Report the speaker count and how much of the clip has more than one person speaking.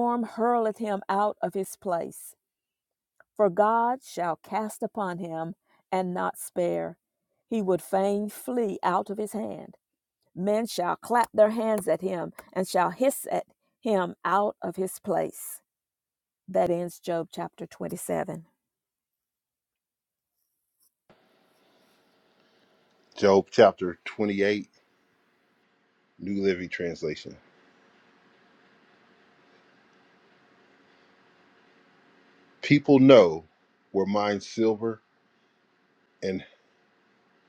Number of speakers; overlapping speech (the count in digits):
2, no overlap